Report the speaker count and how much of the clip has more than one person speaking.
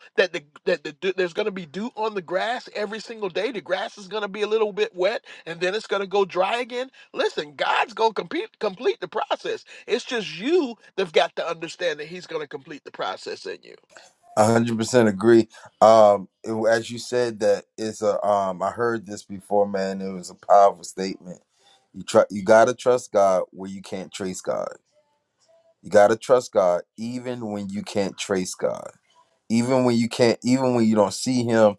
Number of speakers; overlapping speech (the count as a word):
two, no overlap